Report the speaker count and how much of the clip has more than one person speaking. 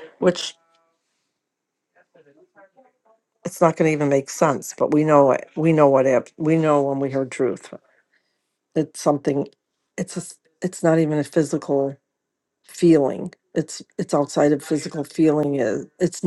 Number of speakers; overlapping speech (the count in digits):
1, no overlap